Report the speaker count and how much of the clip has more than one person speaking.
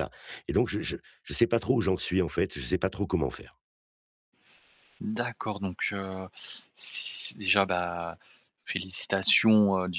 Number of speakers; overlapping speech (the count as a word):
two, no overlap